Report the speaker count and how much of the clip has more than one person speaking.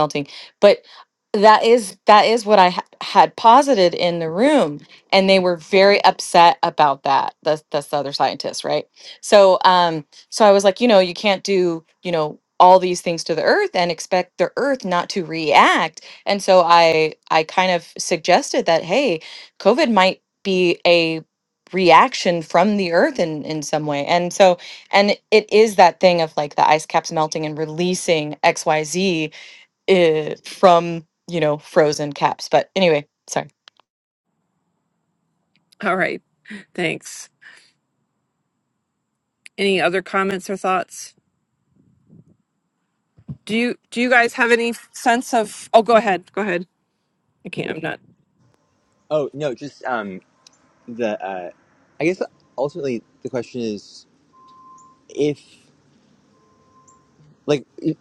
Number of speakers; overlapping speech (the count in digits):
3, no overlap